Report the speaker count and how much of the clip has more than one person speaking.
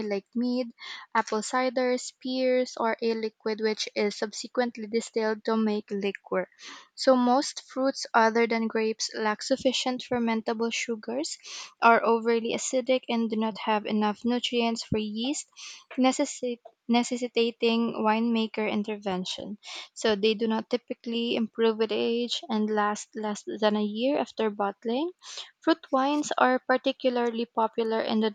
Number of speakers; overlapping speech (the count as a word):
one, no overlap